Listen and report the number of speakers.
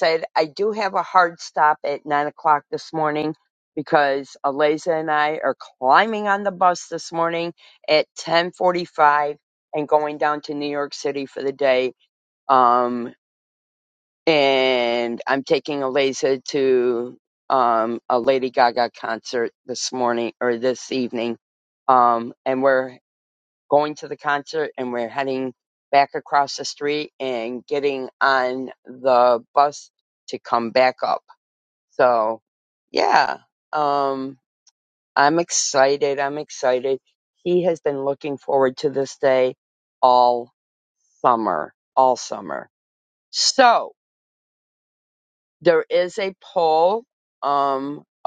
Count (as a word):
one